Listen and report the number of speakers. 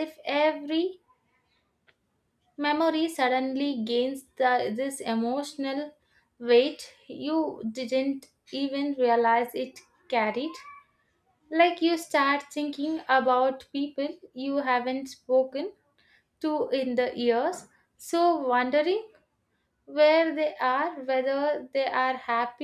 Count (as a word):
one